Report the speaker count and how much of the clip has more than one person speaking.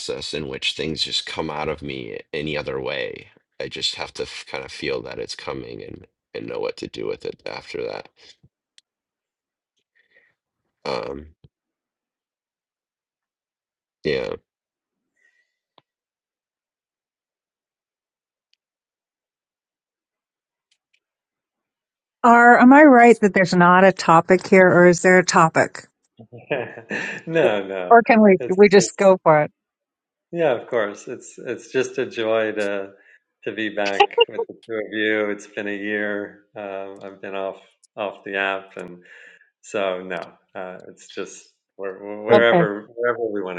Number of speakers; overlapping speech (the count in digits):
3, about 2%